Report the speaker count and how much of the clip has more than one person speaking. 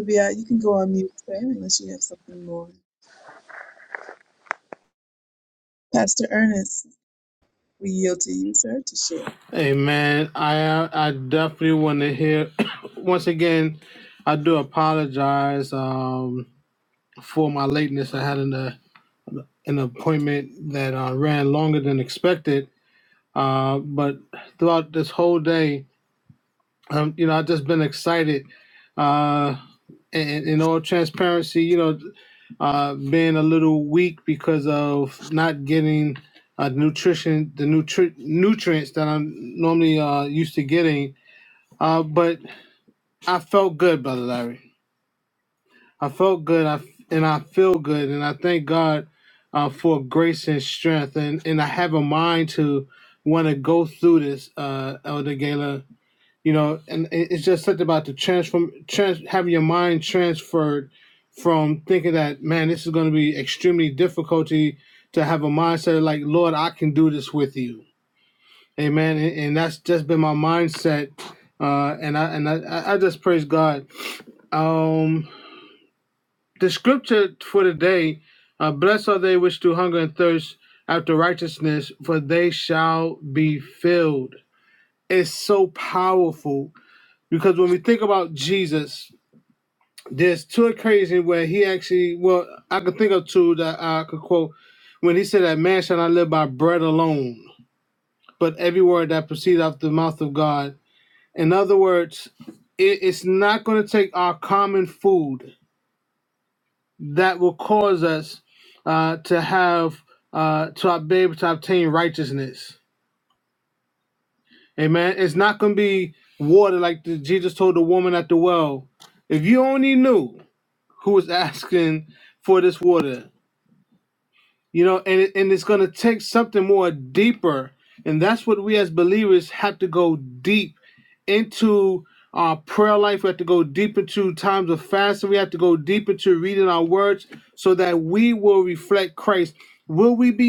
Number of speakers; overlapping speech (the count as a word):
two, no overlap